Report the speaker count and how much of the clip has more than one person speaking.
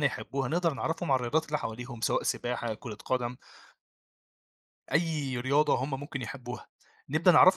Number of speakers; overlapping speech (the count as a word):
one, no overlap